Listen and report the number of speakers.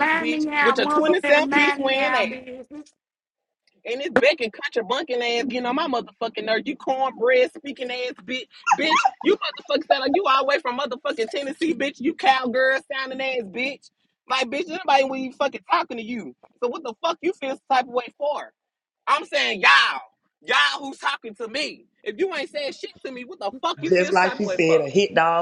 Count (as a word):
three